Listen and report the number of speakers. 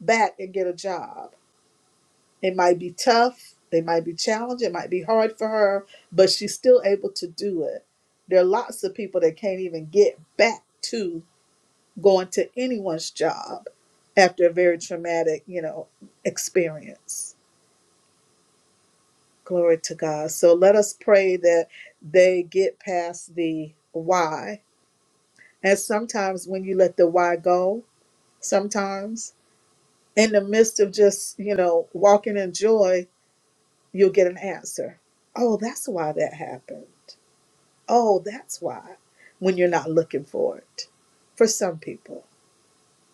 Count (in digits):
1